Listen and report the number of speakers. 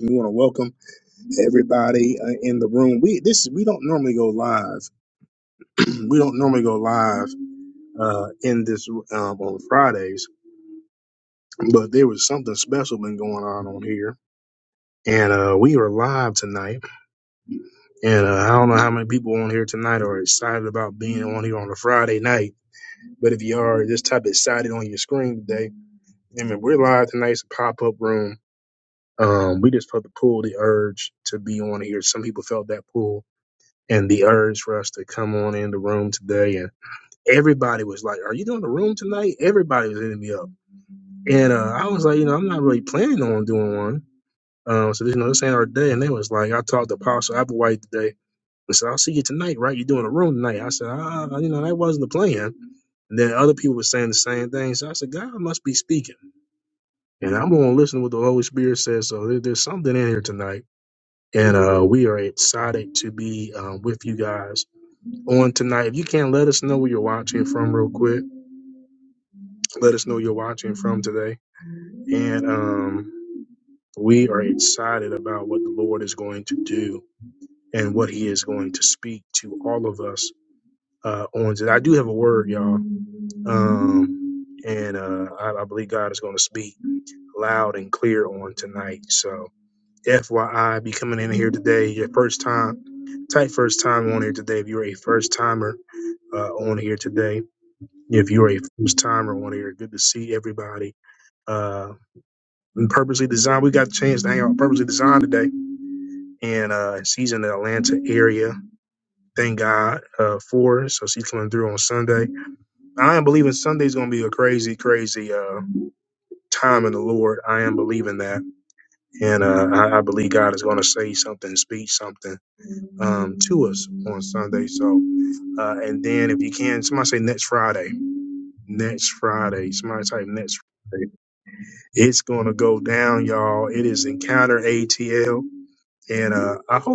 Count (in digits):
1